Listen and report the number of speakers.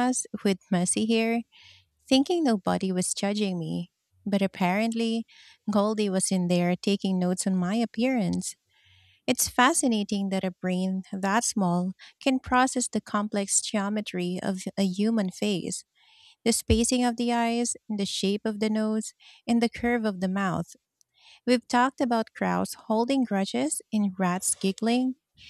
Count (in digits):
1